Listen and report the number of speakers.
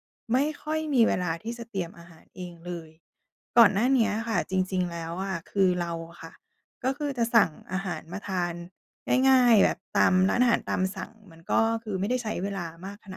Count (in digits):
1